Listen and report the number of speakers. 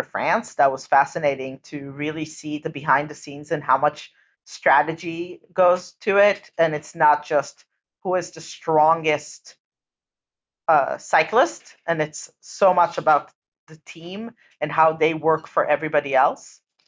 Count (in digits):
1